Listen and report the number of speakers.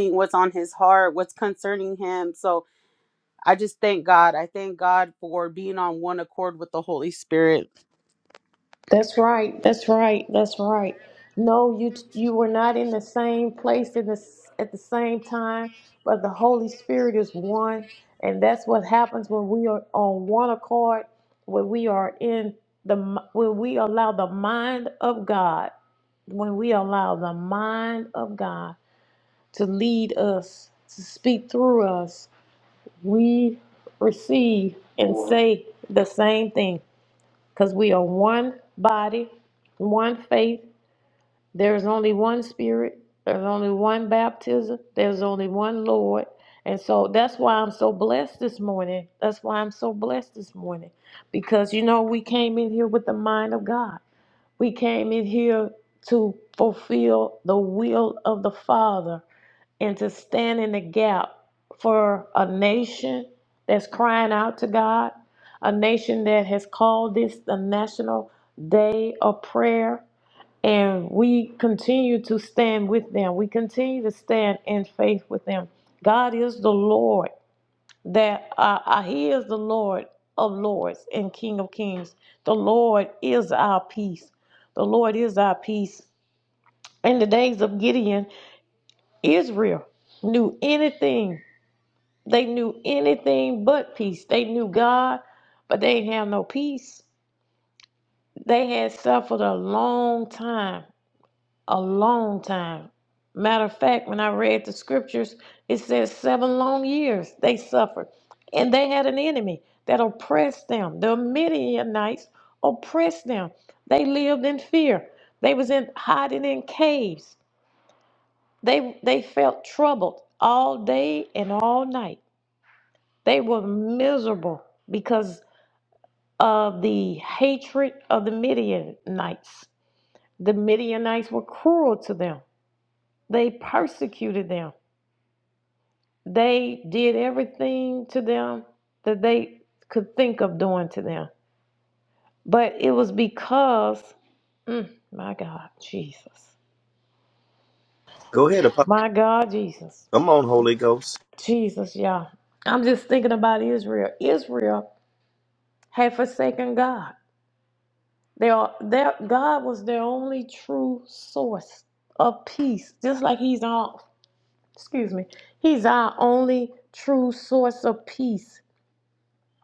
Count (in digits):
3